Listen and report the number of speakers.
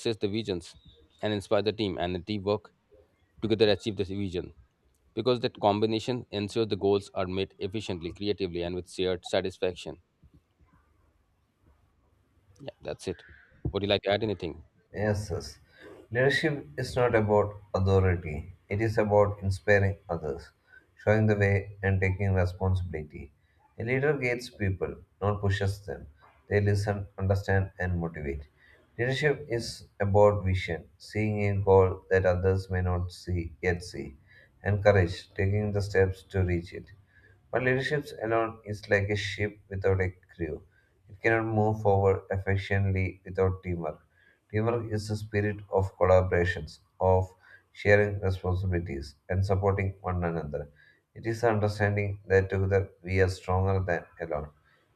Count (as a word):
two